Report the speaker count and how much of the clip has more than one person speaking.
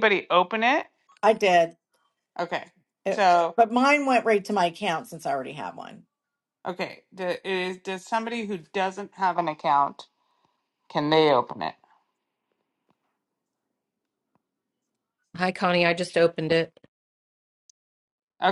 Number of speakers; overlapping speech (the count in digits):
3, under 1%